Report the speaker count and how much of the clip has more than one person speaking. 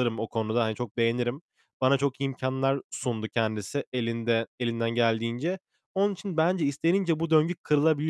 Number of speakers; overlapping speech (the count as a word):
one, no overlap